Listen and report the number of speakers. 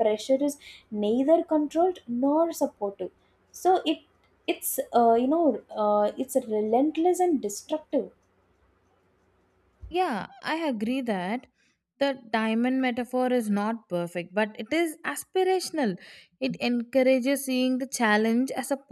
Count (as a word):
two